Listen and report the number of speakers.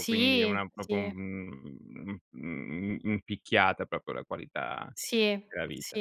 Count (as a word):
two